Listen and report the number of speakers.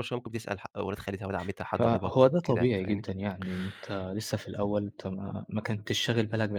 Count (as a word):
two